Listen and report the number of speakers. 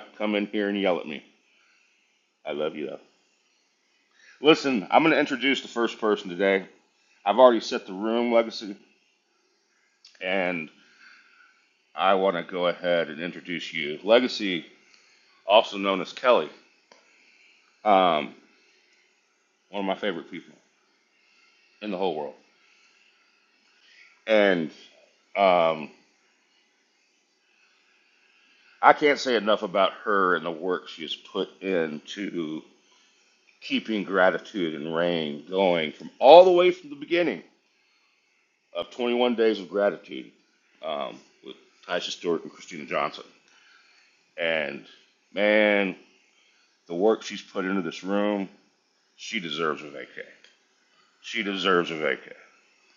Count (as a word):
one